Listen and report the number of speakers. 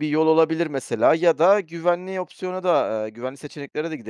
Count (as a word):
one